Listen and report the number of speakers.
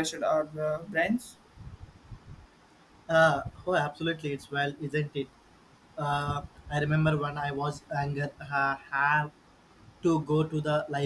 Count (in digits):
2